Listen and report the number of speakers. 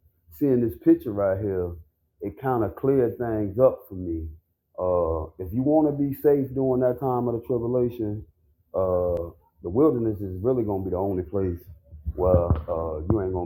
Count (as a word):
one